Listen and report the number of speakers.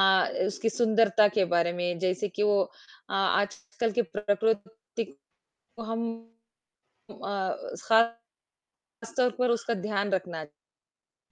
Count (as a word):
one